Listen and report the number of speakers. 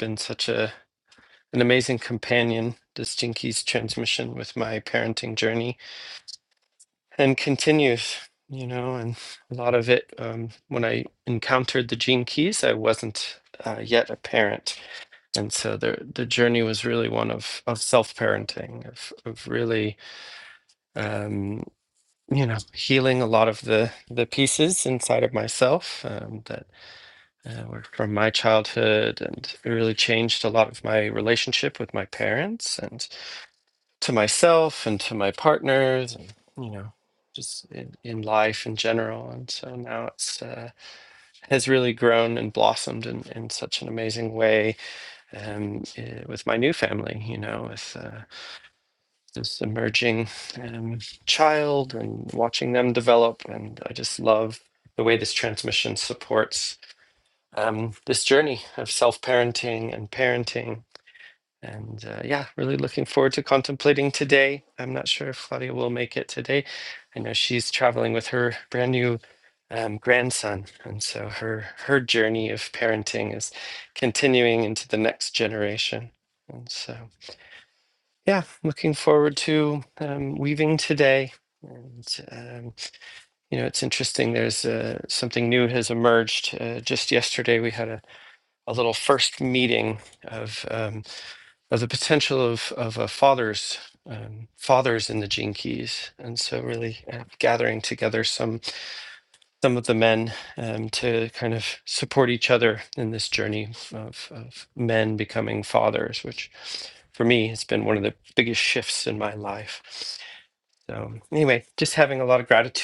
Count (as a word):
one